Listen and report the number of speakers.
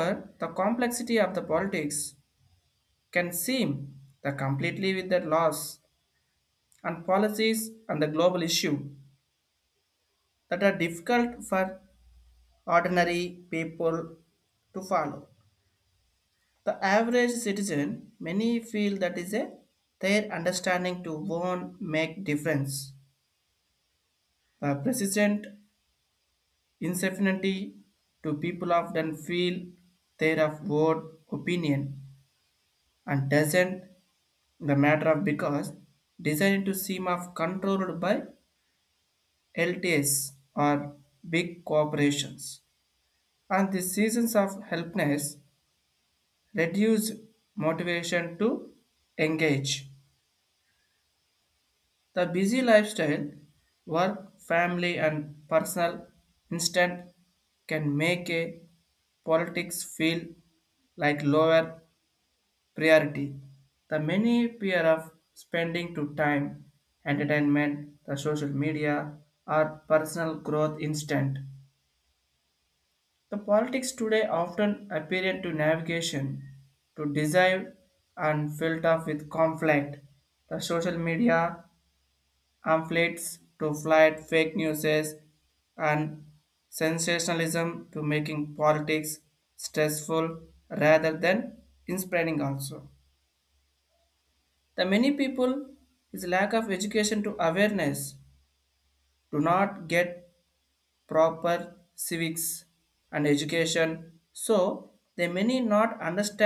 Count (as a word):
one